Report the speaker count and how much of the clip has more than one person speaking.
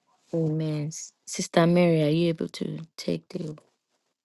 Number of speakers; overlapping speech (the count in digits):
1, no overlap